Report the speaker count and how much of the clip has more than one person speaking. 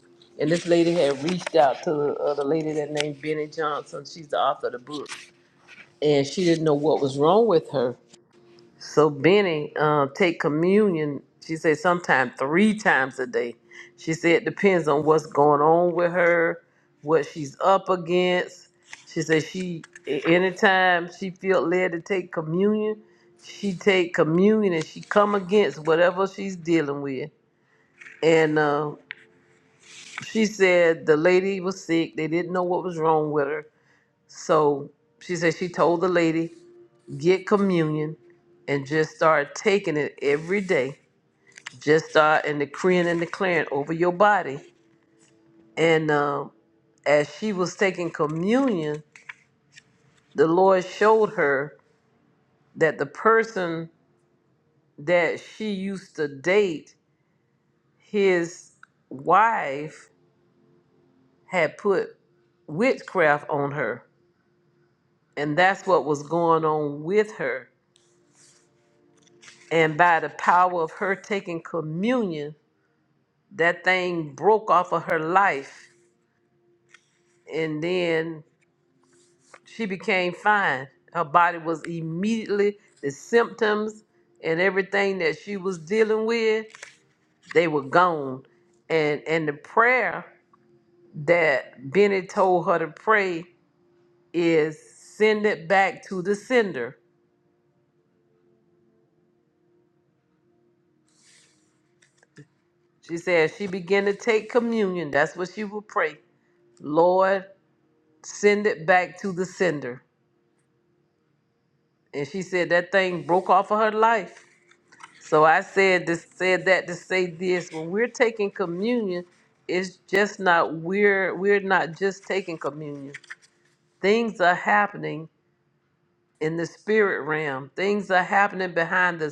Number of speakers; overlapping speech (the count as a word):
one, no overlap